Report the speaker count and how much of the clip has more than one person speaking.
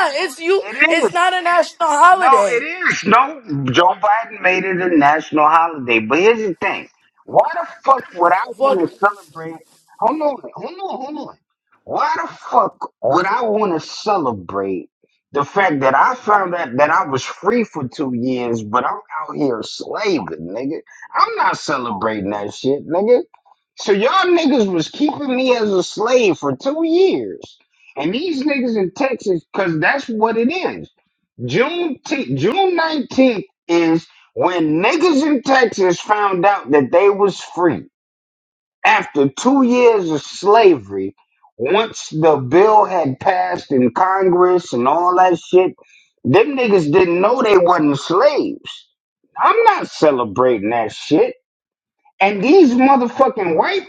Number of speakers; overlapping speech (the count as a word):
two, about 2%